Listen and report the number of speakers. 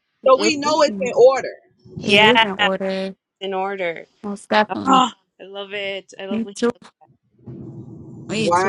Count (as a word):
three